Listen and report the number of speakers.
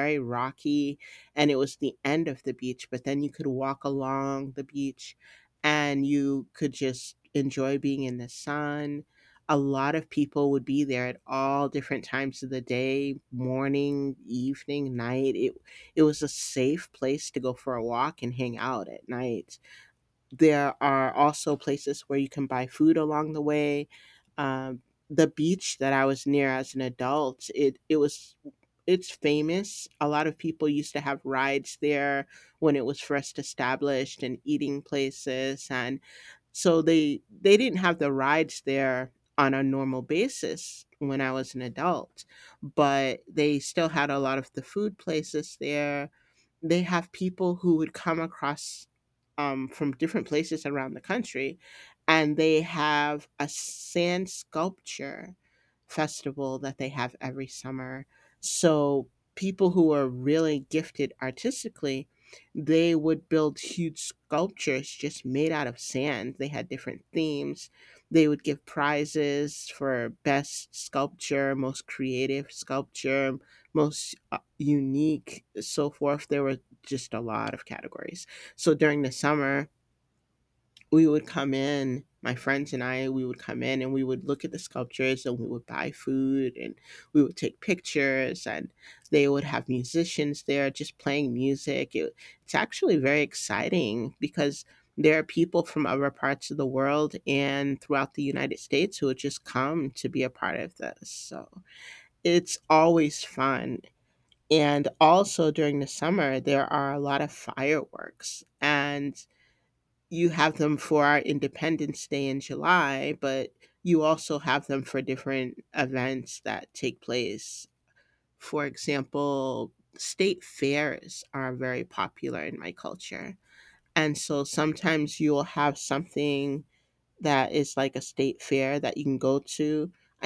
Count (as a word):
one